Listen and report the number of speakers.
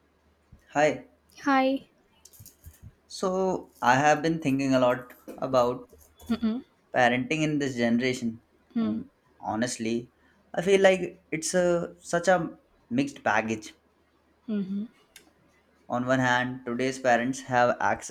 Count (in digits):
2